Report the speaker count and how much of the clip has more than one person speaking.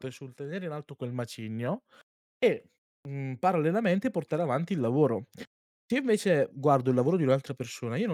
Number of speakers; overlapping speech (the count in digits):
1, no overlap